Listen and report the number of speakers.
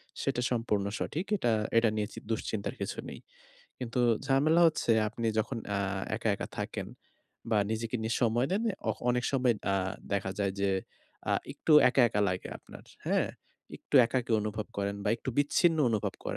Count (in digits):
1